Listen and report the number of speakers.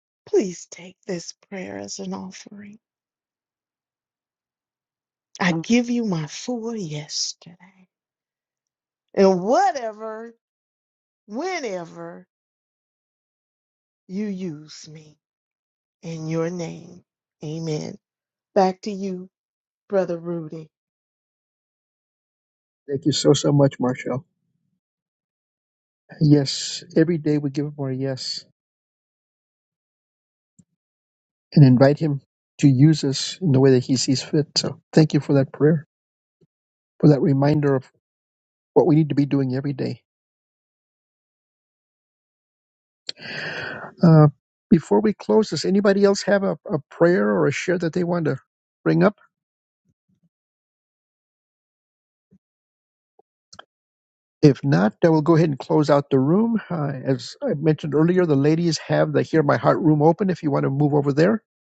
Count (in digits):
2